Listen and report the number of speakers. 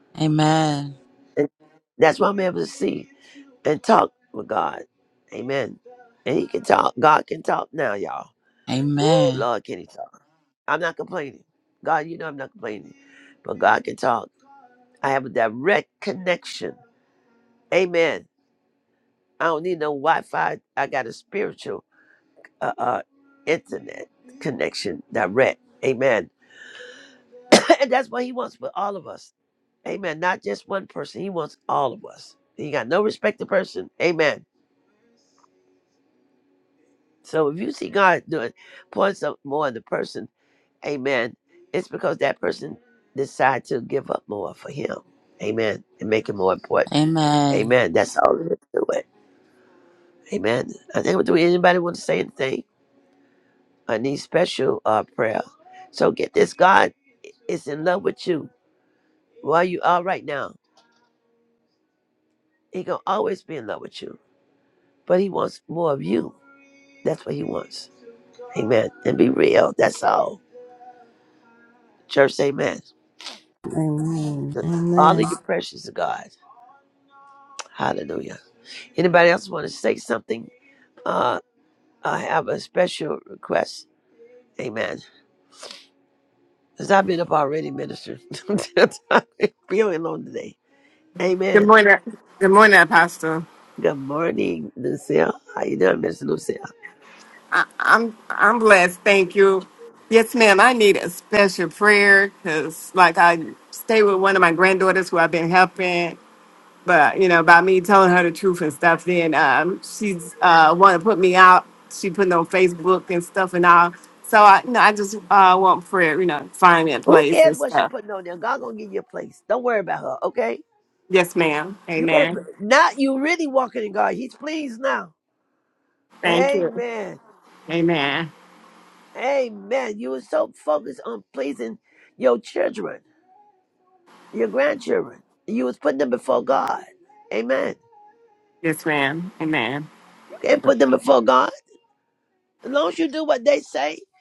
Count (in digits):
4